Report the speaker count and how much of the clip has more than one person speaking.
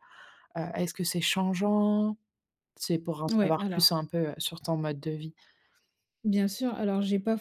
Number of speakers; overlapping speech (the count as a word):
two, about 8%